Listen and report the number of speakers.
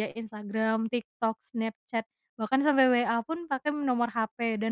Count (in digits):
1